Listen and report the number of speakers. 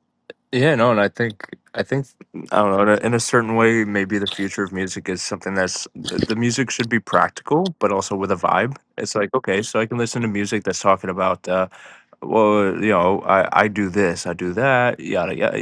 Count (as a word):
one